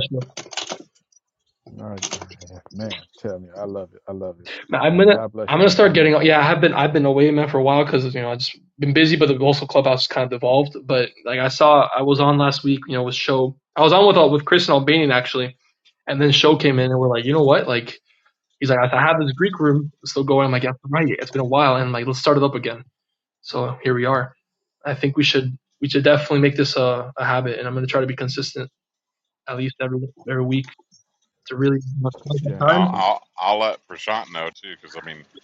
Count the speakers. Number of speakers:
three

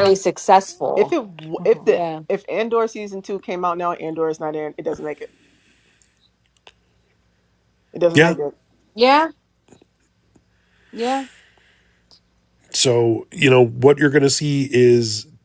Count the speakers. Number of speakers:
three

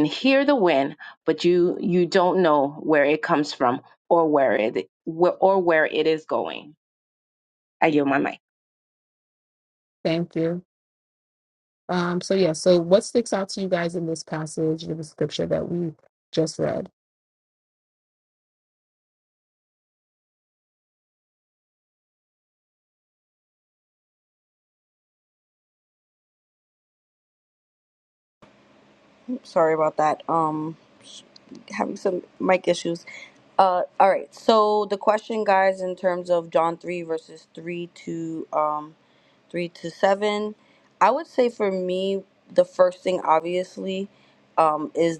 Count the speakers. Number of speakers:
three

